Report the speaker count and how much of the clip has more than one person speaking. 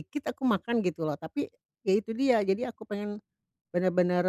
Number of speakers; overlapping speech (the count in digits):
1, no overlap